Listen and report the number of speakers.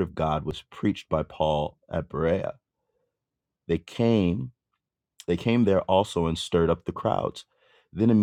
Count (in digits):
1